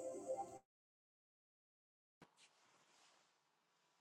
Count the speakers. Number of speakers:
0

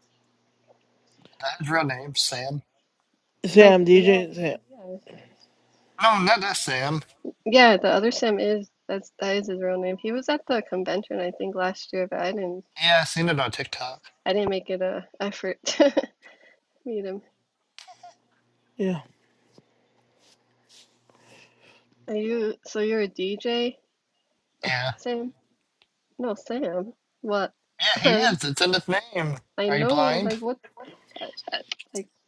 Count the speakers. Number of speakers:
3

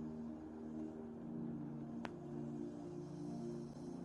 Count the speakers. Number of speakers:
0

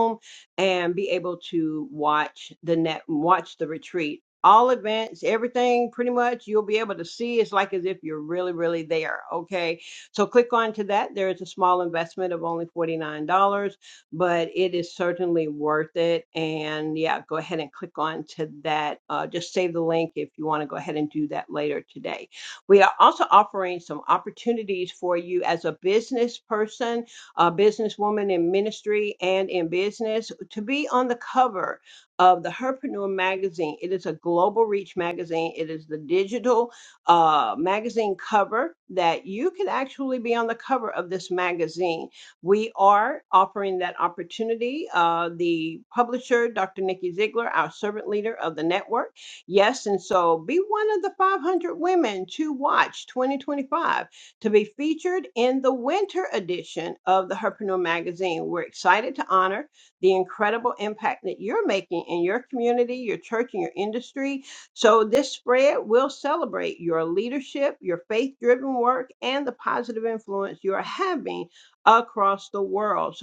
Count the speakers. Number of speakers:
1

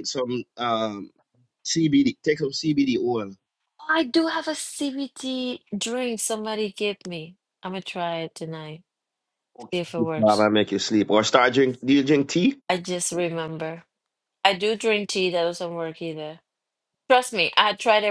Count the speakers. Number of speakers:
2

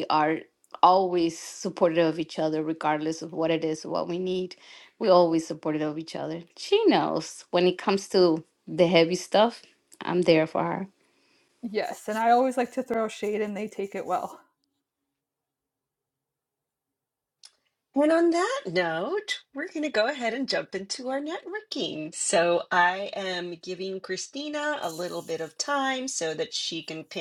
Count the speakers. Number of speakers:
3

